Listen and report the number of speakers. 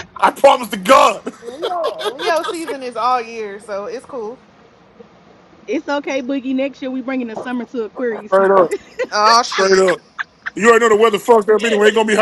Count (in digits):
3